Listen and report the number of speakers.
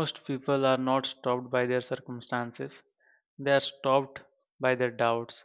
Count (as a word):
one